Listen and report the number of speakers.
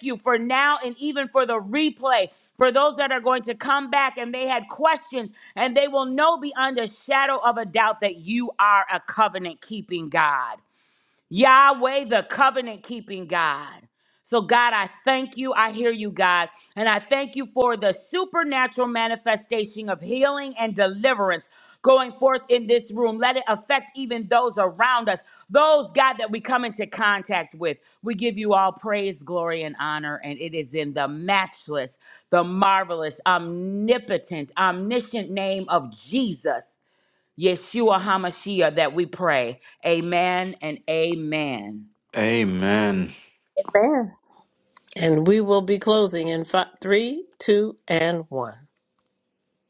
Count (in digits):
3